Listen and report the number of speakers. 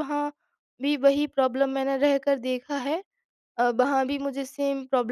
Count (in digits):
1